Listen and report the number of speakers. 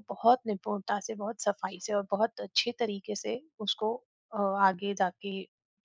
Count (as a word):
one